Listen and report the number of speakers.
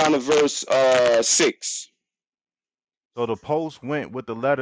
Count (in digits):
2